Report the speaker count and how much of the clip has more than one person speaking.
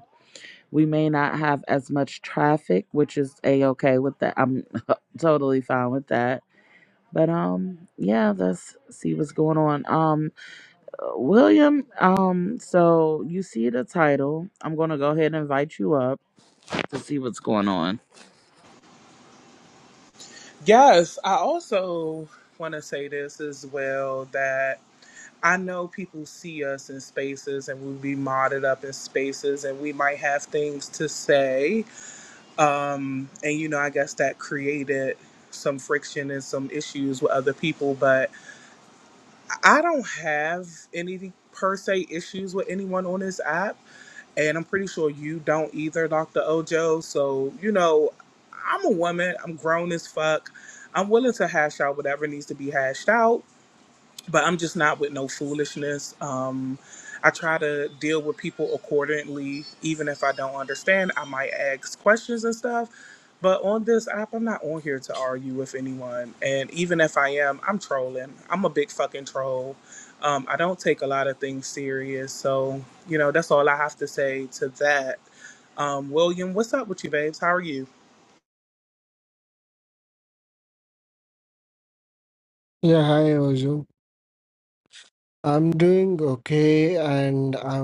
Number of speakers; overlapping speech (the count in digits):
3, no overlap